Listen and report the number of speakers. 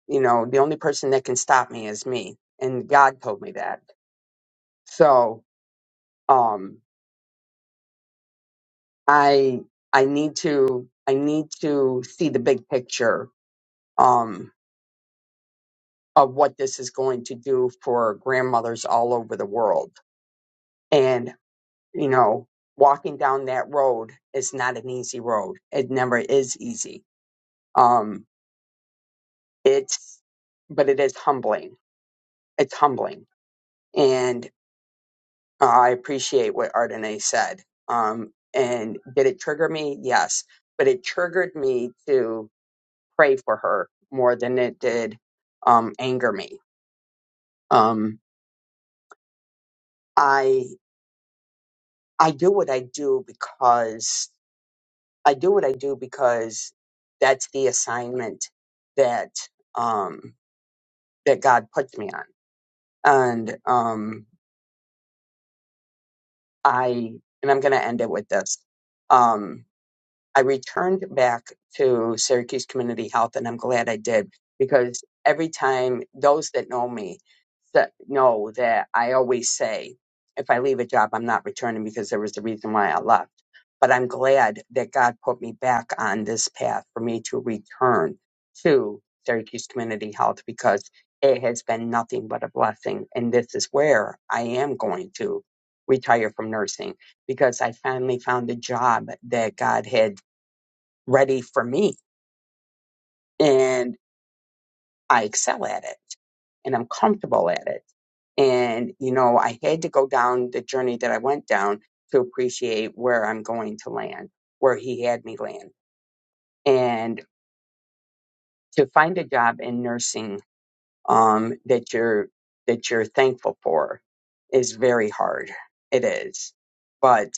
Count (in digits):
1